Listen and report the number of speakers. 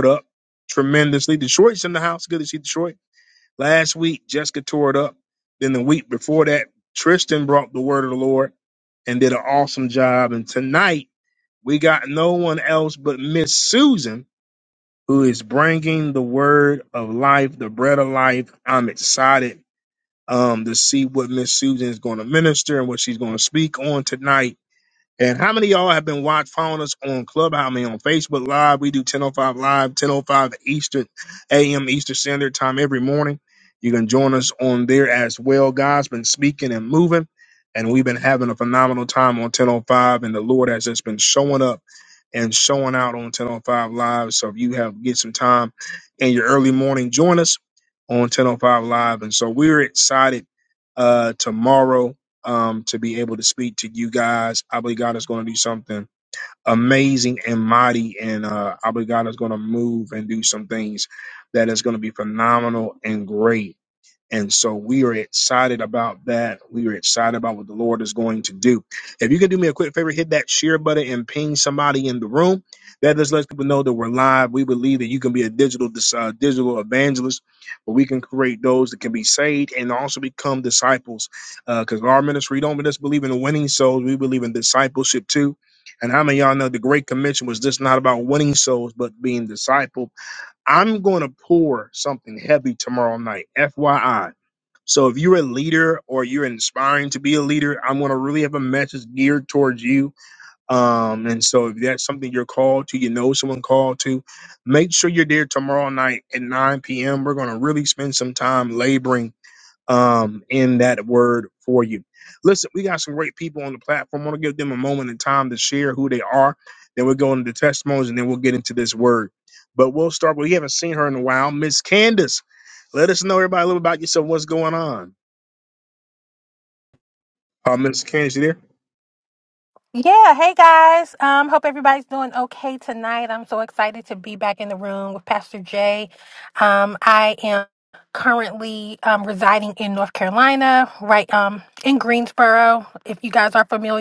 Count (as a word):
two